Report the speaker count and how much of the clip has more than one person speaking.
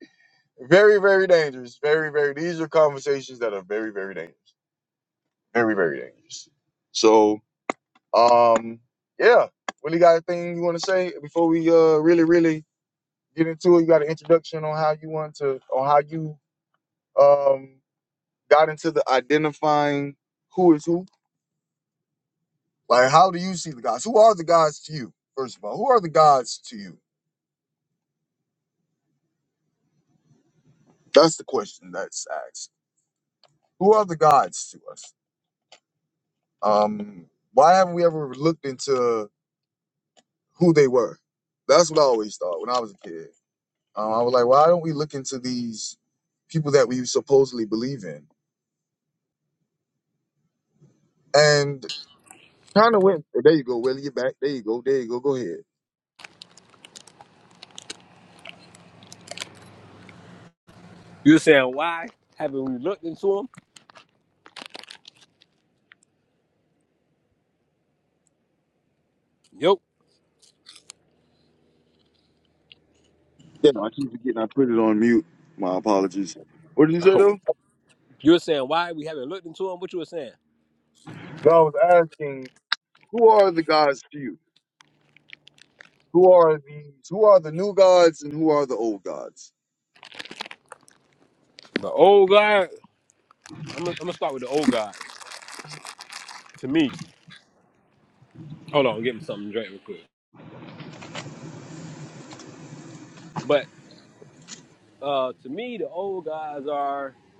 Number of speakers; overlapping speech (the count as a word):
two, under 1%